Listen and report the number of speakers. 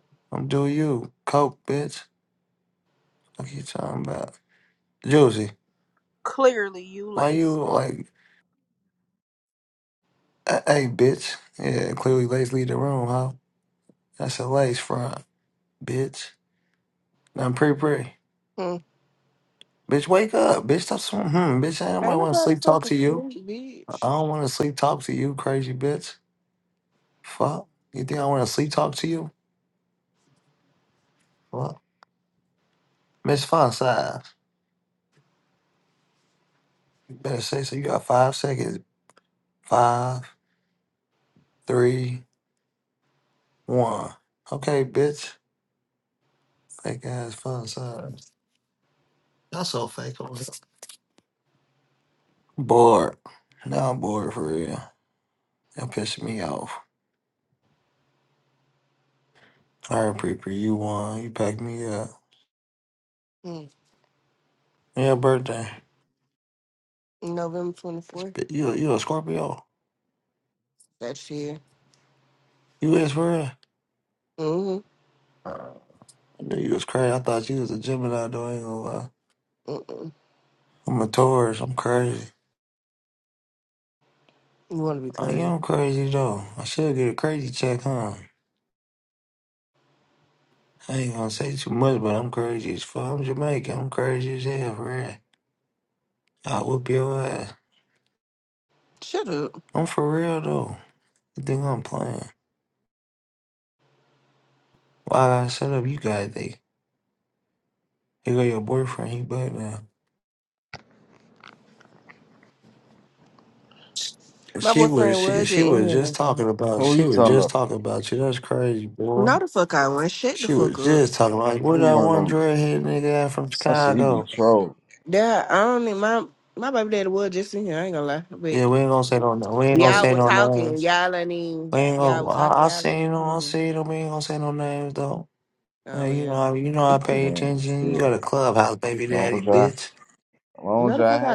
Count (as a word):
four